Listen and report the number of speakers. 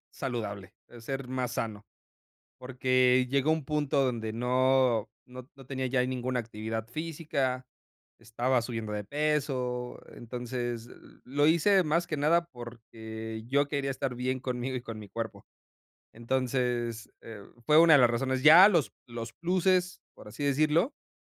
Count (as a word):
one